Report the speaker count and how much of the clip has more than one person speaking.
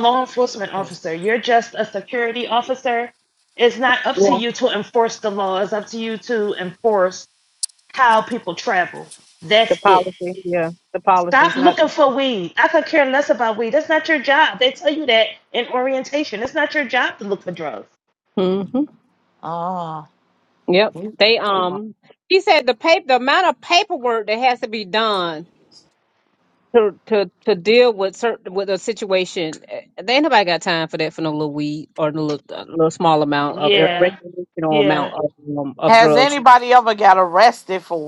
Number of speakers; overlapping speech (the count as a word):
three, about 8%